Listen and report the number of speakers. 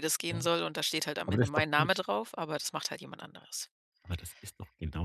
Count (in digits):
2